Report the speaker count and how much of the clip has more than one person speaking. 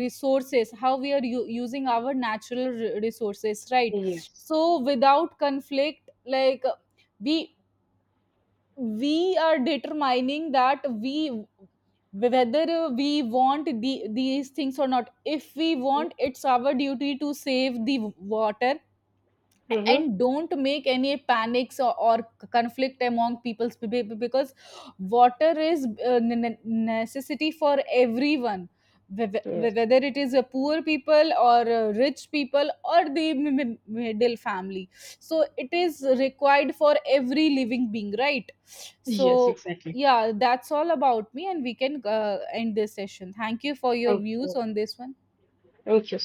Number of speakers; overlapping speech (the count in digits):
2, about 3%